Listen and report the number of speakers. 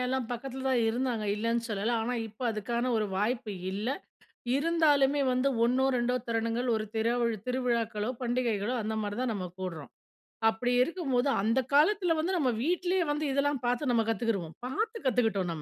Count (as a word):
one